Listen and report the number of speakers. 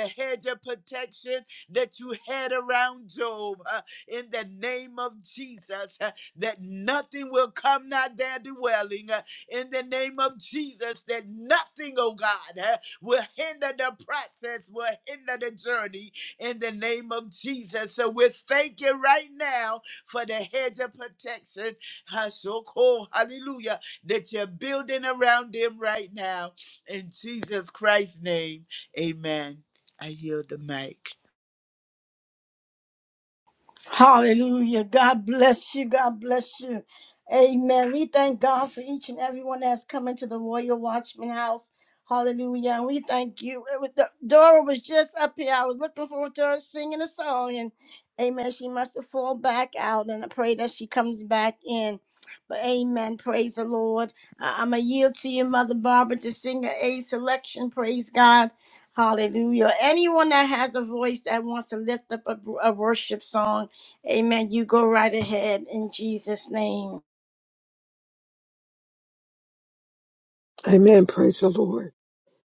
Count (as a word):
three